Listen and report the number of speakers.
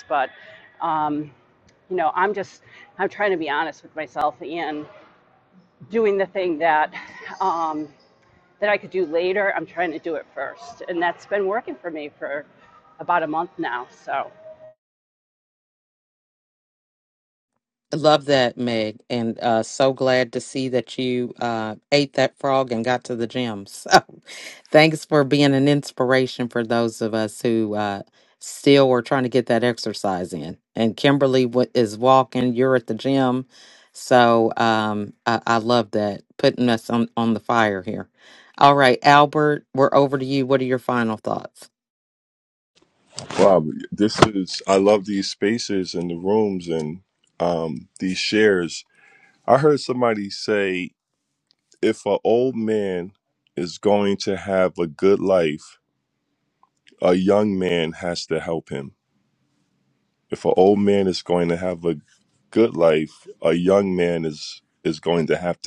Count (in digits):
3